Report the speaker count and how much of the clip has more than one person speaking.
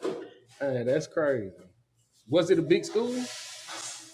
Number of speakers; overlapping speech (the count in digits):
1, no overlap